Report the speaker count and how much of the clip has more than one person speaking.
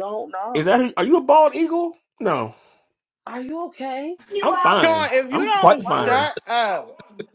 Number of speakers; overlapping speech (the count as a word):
three, about 23%